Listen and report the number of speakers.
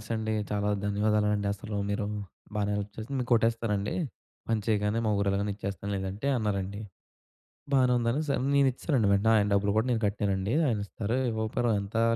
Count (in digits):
1